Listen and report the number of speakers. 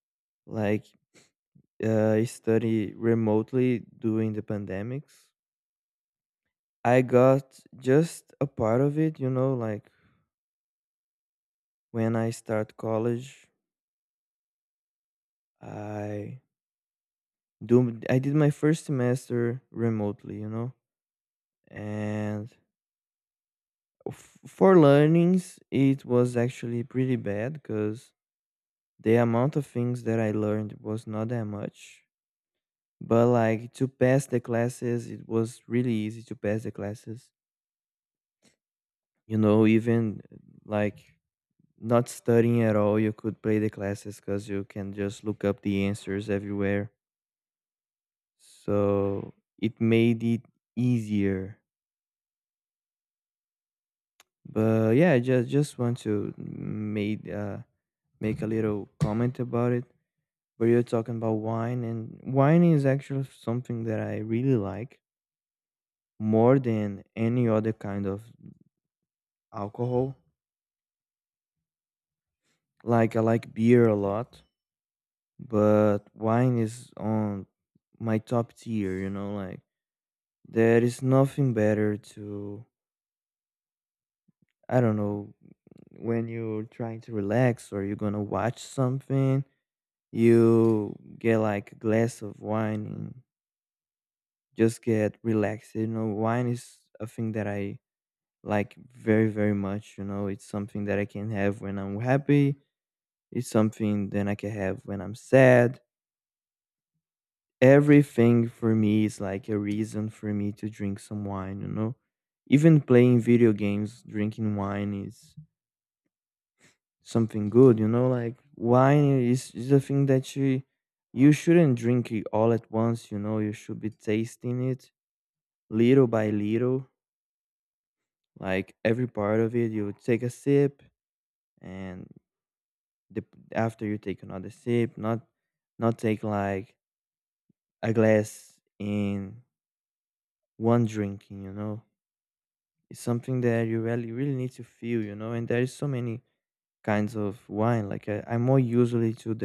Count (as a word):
one